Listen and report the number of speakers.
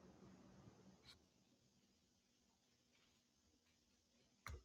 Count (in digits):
0